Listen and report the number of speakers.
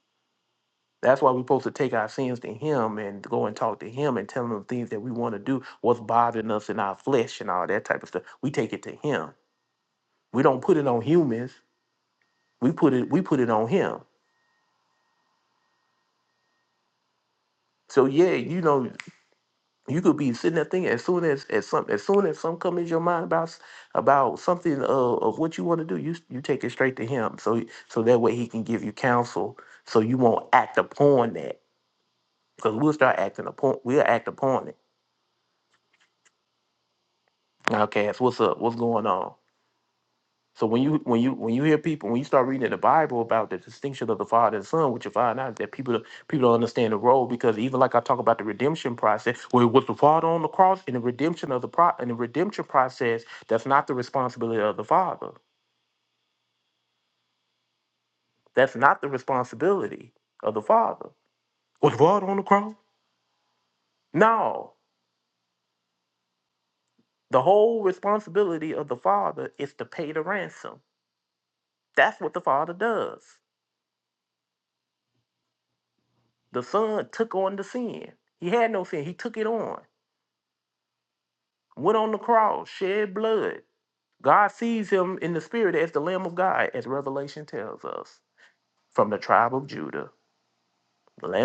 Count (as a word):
one